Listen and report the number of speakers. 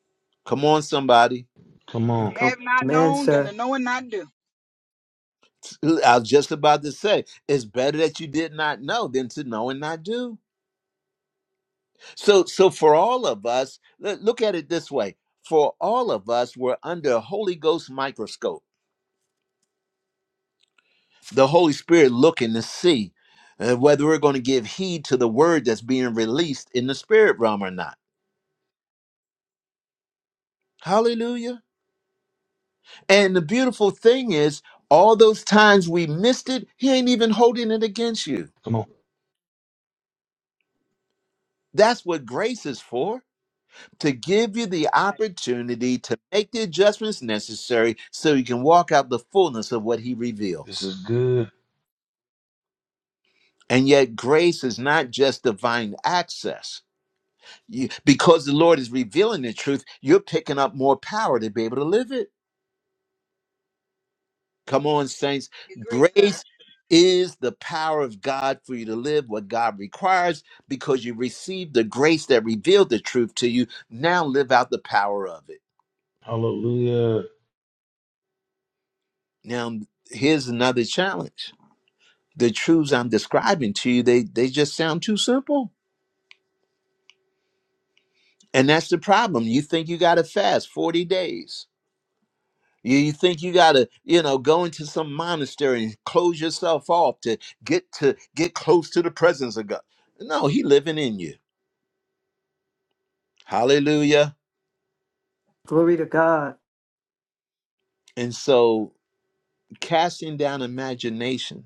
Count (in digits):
4